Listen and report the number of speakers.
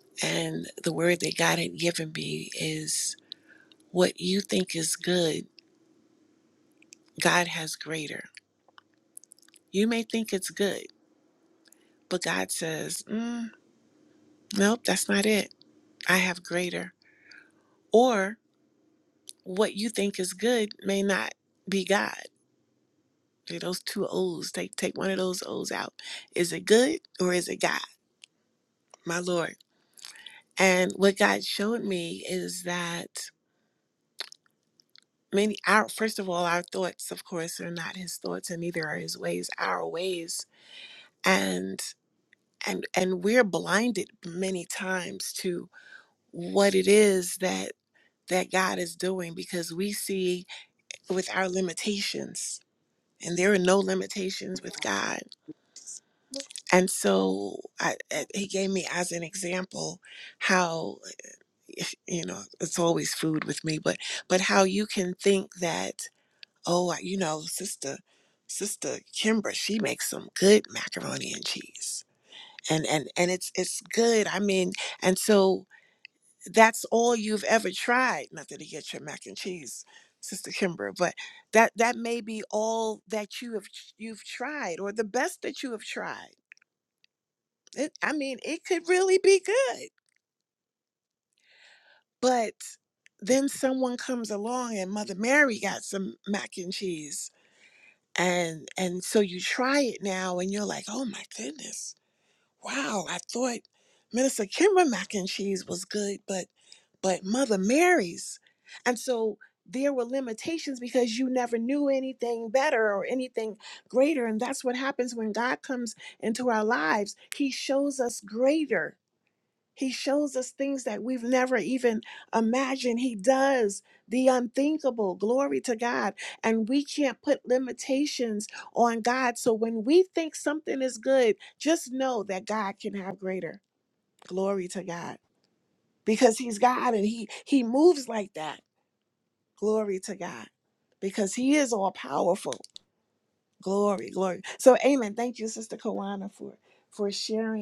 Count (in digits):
1